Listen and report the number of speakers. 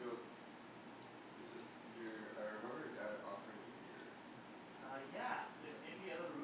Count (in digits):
2